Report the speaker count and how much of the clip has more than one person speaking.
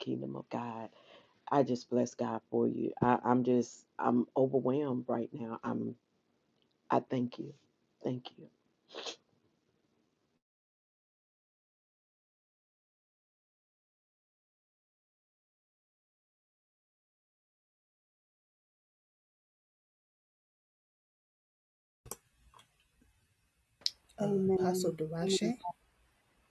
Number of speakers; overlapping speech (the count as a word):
two, no overlap